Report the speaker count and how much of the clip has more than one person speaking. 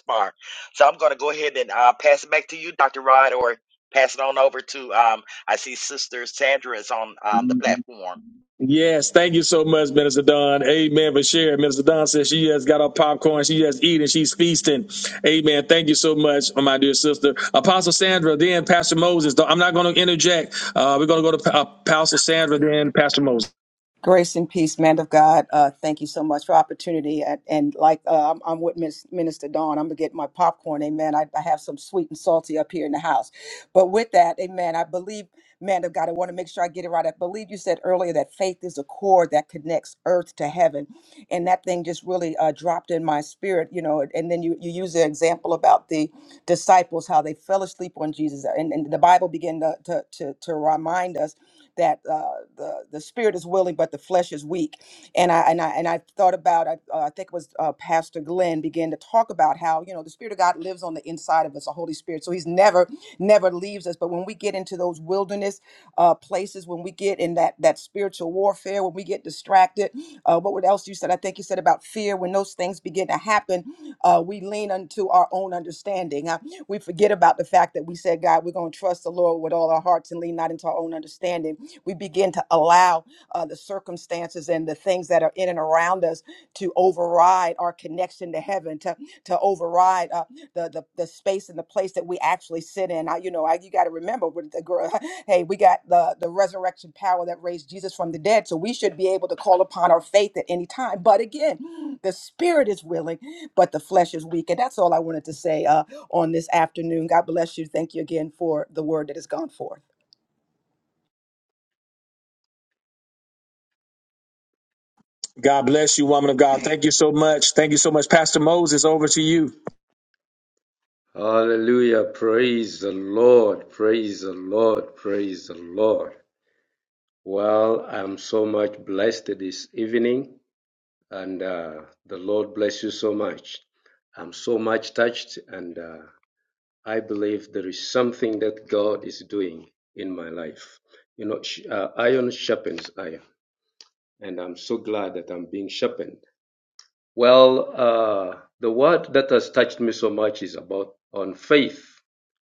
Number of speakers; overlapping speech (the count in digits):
4, no overlap